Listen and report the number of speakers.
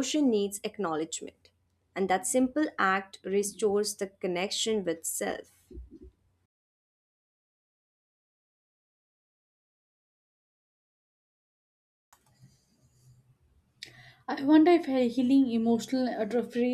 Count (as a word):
two